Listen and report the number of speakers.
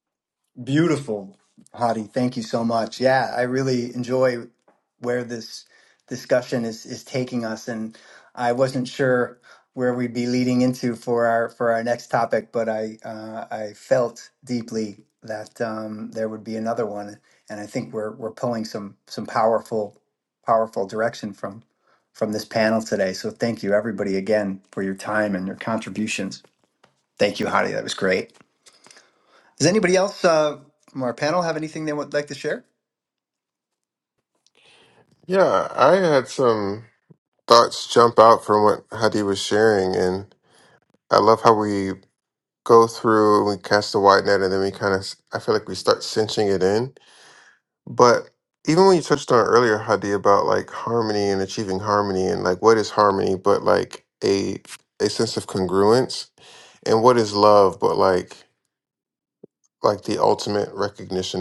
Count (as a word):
two